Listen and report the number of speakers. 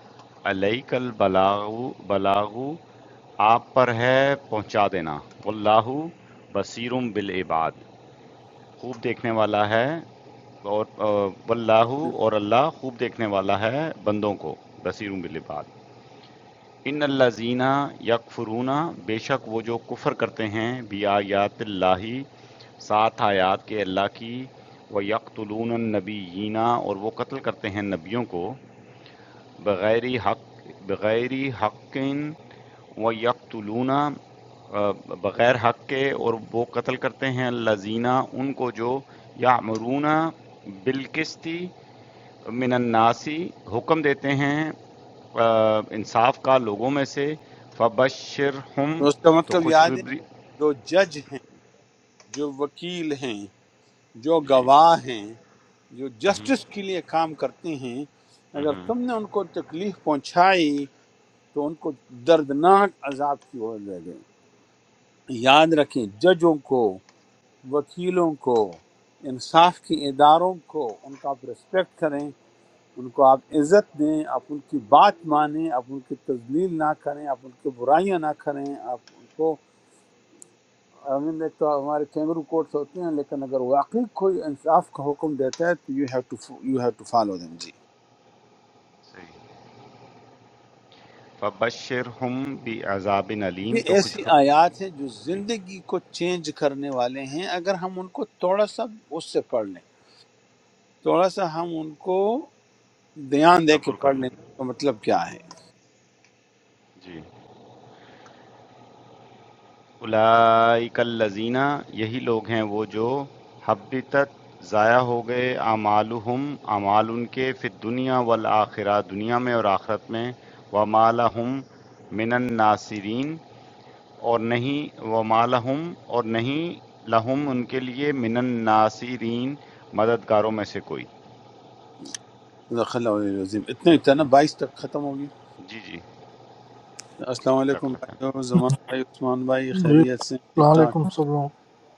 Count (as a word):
three